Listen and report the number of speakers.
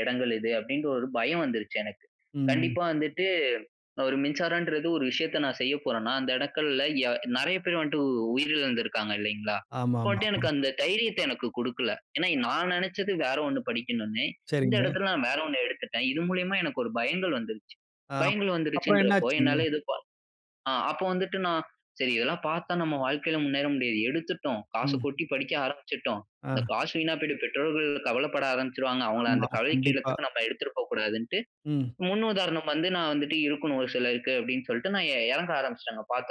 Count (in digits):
2